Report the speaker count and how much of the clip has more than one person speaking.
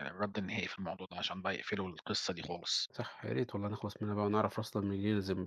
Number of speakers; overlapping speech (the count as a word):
two, no overlap